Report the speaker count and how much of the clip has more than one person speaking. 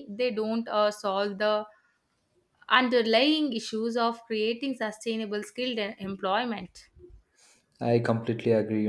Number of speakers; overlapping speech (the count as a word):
two, no overlap